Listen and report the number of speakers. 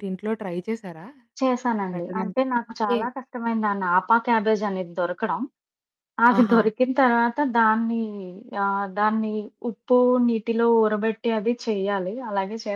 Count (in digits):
2